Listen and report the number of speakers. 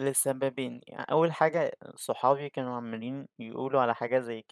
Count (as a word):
one